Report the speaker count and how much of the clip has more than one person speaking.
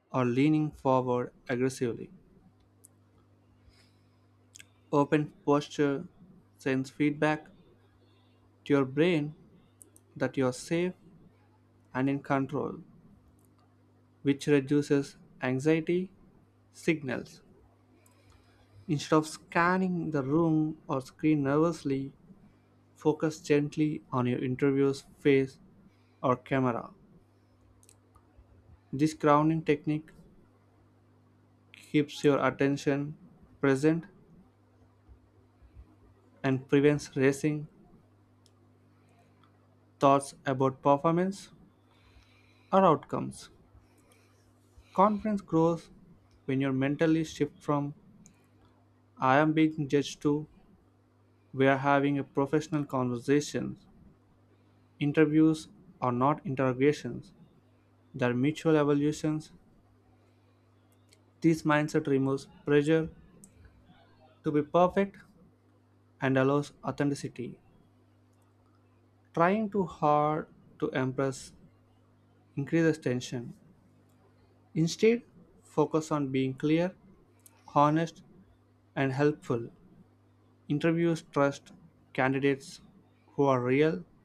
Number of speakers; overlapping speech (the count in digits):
1, no overlap